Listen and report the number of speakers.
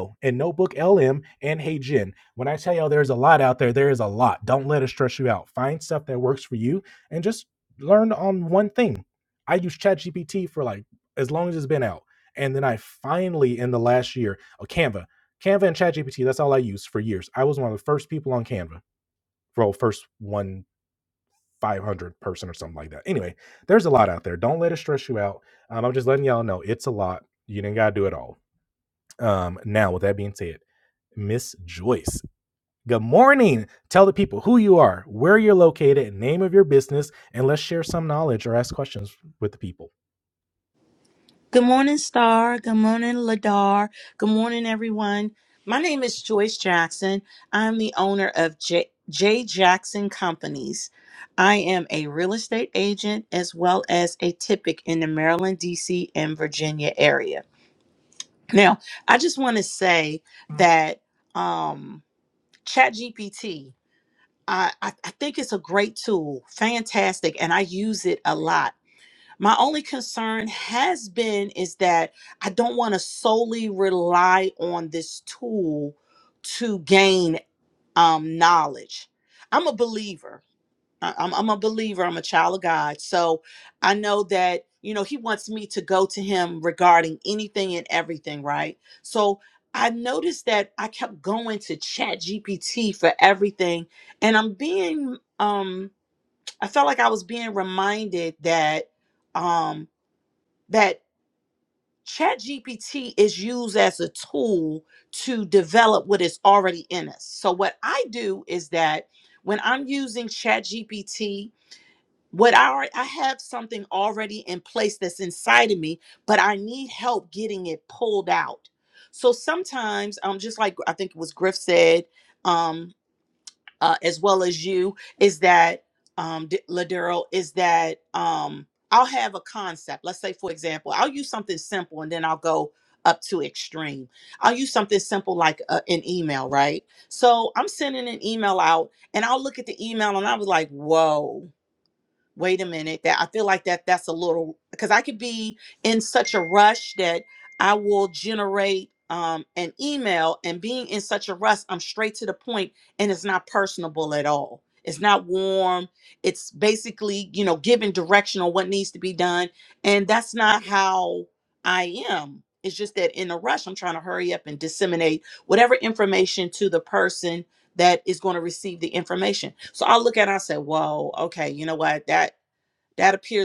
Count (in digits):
2